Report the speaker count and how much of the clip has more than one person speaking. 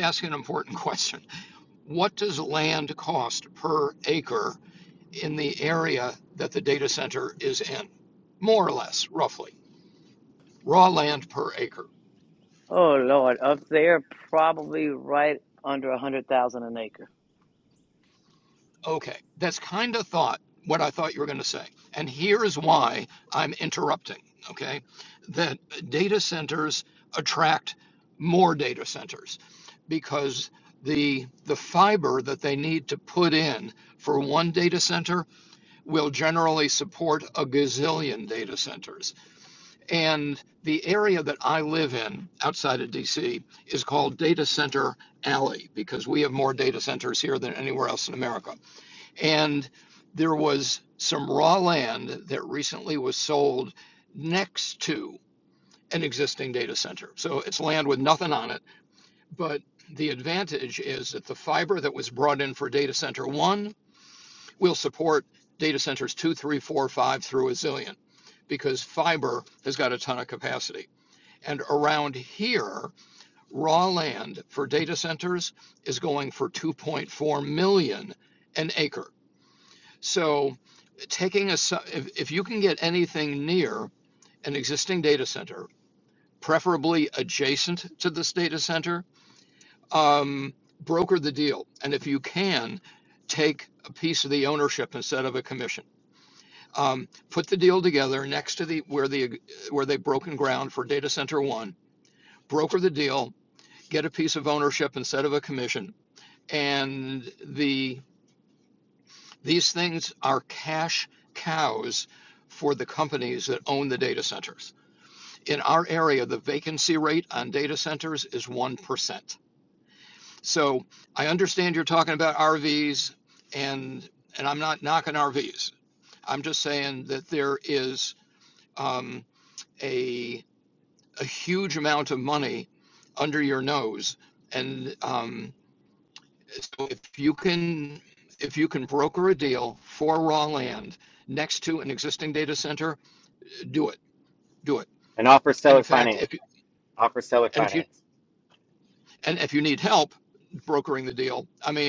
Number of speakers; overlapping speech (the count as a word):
three, about 1%